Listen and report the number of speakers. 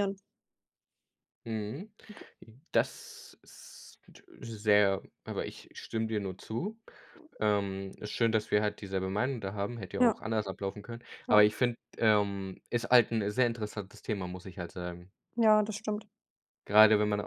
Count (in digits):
2